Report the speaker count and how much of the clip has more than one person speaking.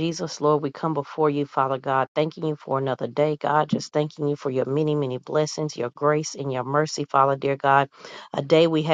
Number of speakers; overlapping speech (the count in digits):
1, no overlap